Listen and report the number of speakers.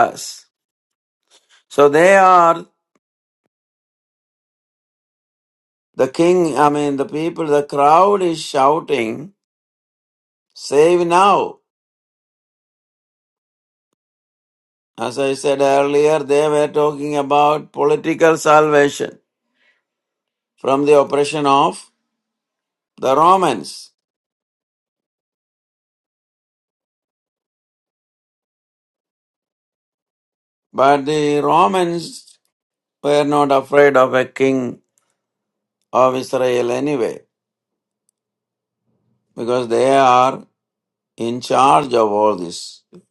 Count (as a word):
one